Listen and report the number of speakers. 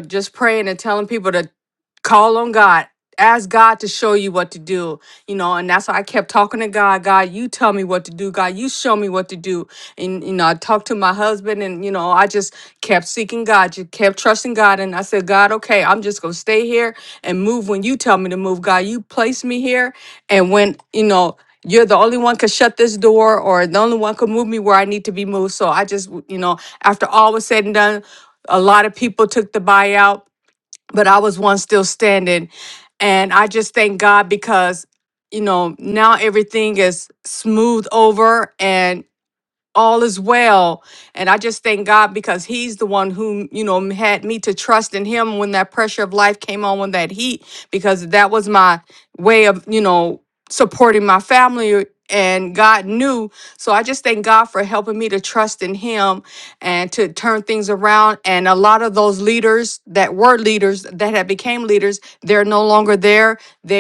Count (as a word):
one